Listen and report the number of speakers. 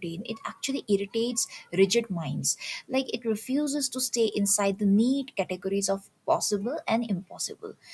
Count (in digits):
1